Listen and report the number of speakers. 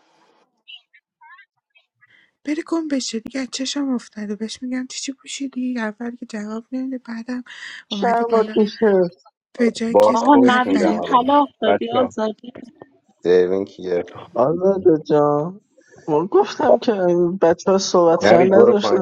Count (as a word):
four